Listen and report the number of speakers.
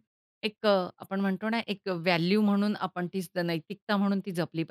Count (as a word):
one